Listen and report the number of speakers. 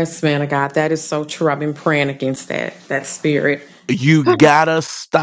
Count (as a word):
two